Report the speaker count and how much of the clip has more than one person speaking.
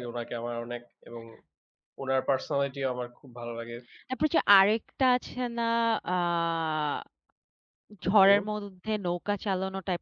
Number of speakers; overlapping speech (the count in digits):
2, about 2%